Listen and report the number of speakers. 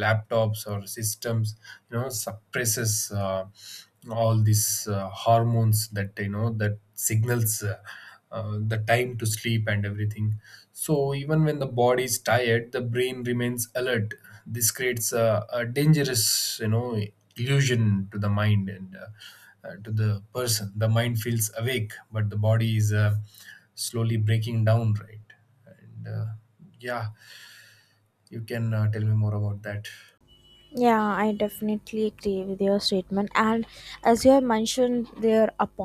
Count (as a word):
two